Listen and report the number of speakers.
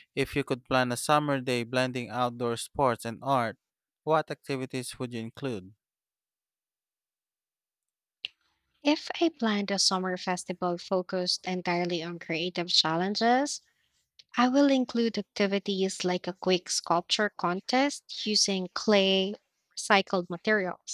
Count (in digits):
2